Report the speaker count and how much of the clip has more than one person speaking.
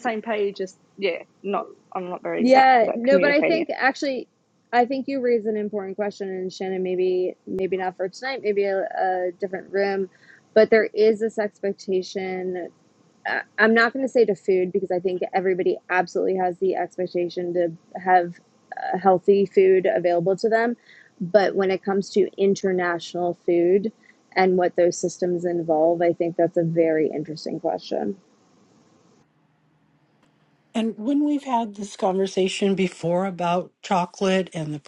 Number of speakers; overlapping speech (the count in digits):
3, about 4%